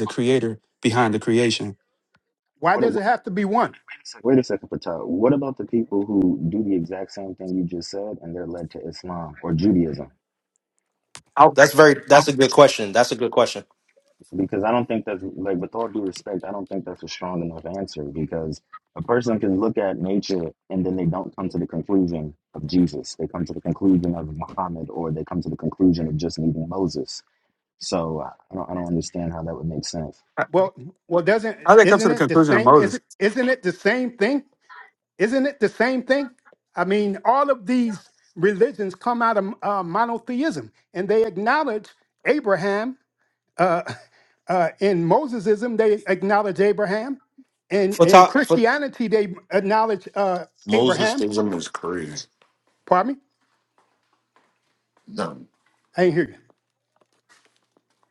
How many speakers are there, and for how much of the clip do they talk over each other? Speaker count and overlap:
five, about 5%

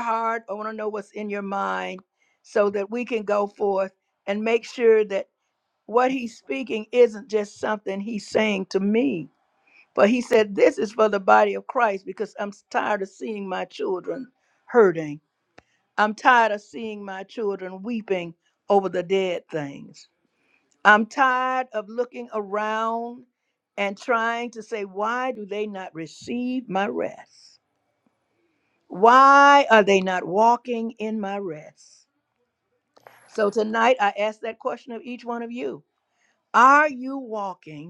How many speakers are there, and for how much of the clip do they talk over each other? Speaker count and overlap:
one, no overlap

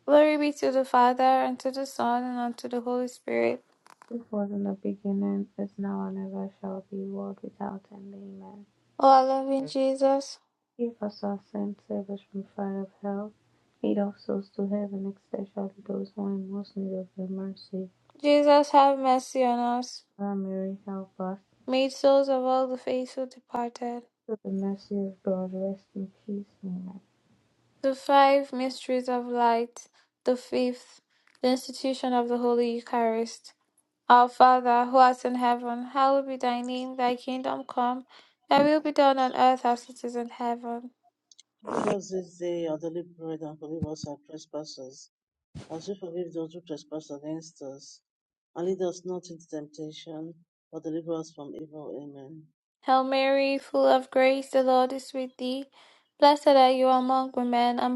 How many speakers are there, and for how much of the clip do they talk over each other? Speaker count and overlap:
three, no overlap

